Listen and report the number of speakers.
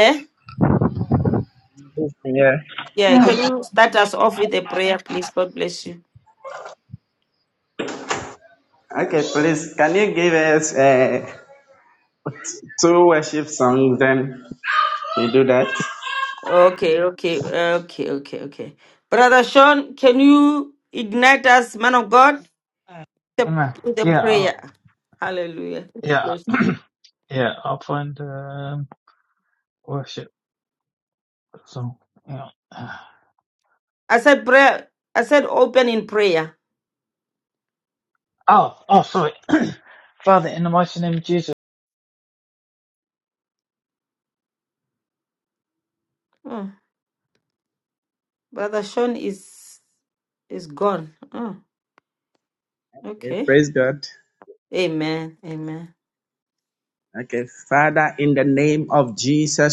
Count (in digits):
3